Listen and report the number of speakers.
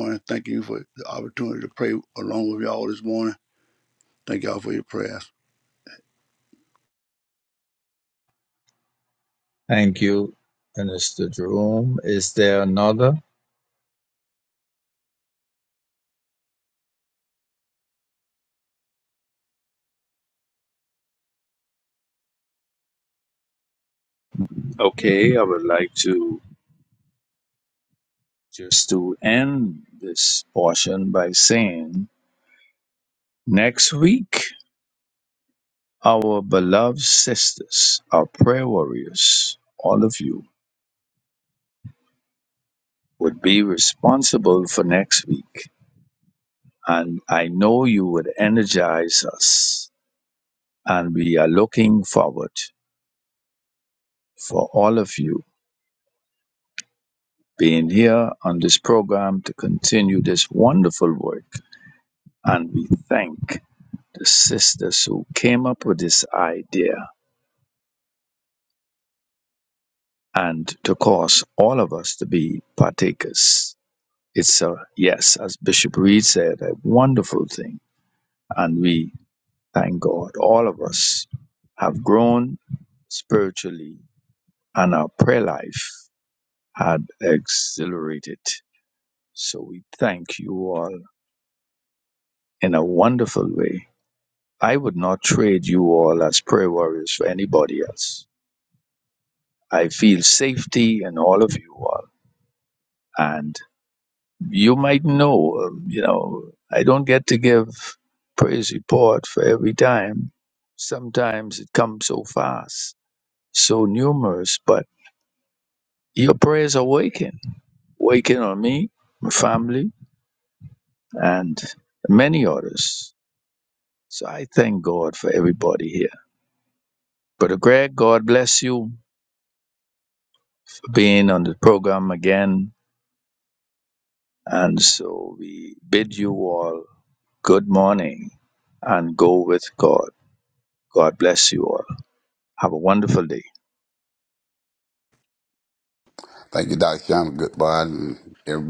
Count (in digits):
3